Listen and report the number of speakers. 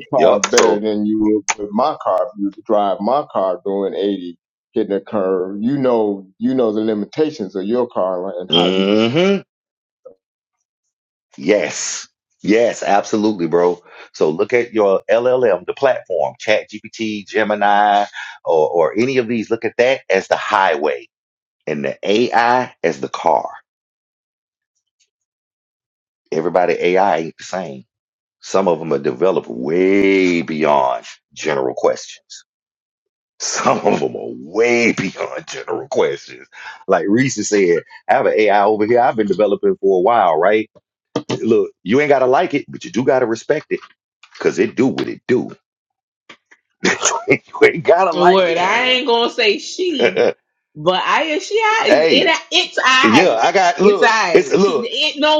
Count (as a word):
three